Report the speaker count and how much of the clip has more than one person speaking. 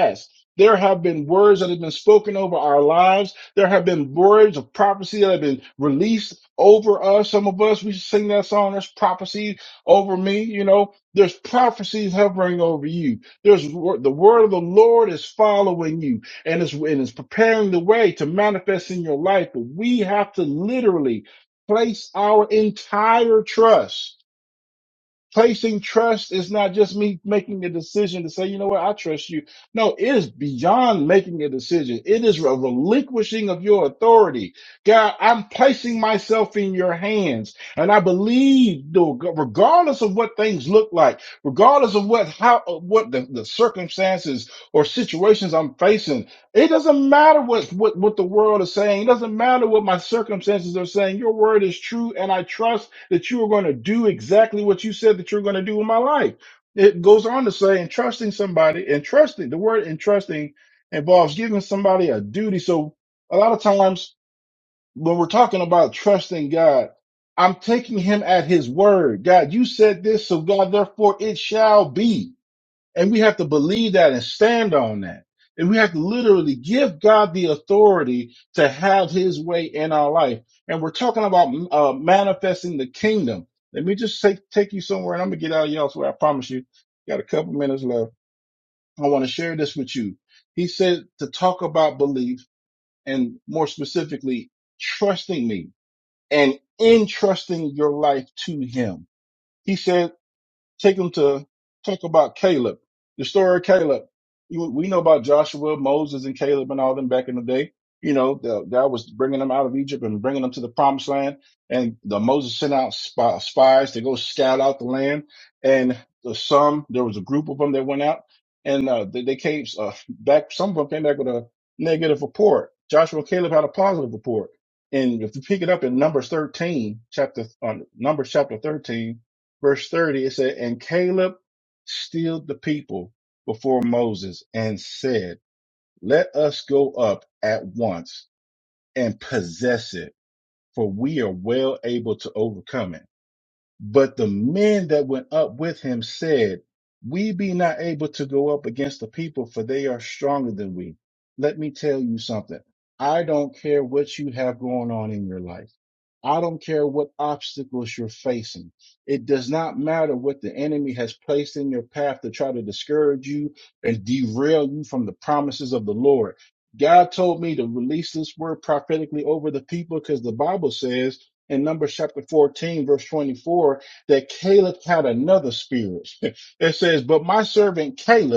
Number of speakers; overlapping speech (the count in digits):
1, no overlap